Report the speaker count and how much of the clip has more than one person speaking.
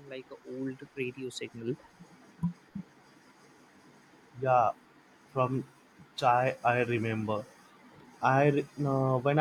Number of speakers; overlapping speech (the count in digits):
2, no overlap